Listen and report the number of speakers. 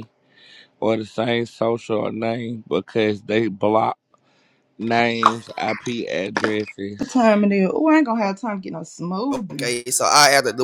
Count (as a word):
three